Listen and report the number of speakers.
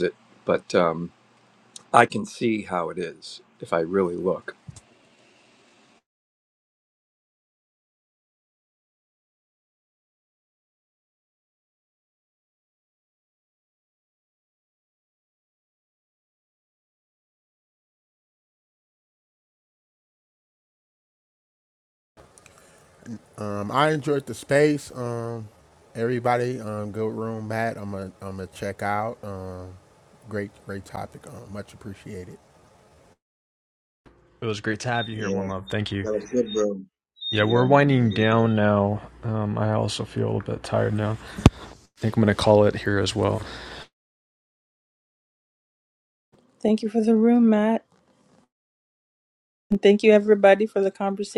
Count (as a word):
five